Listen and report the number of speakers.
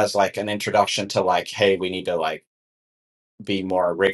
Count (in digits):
1